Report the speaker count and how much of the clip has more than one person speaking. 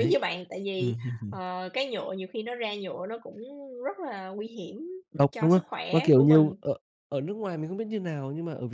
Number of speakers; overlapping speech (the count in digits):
2, about 18%